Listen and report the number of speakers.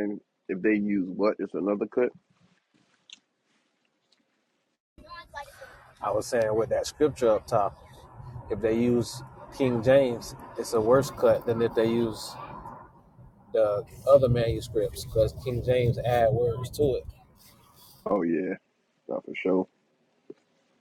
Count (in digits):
2